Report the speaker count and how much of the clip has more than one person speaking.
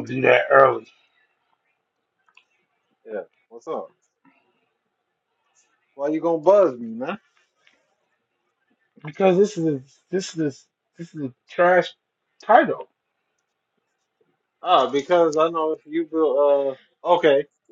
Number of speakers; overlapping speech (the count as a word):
two, no overlap